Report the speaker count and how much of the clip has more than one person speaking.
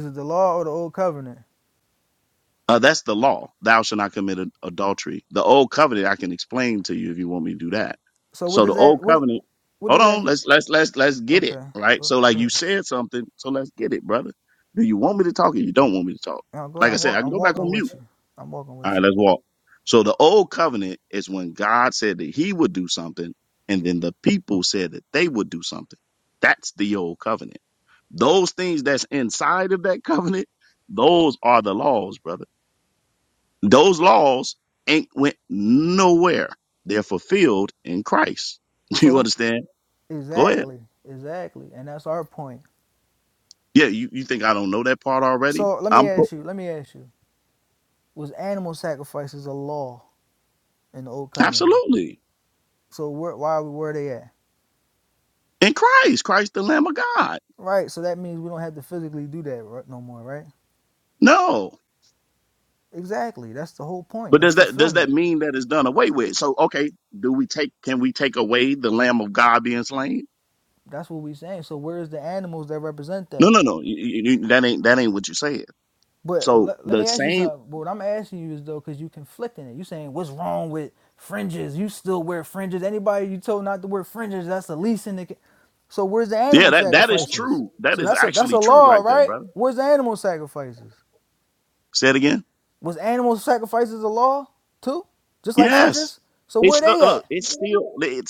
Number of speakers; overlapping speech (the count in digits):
2, about 10%